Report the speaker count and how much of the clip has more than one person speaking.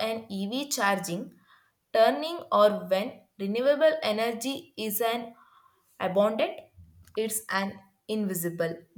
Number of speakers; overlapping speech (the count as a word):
one, no overlap